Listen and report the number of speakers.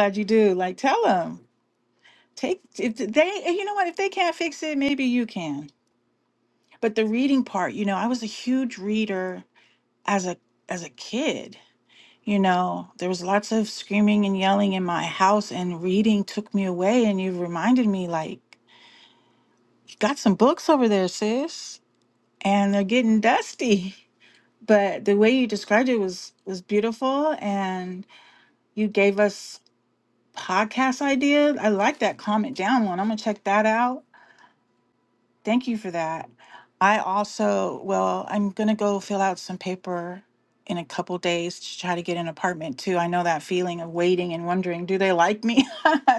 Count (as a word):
one